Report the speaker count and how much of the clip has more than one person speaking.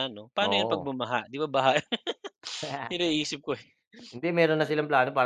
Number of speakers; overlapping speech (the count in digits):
2, about 9%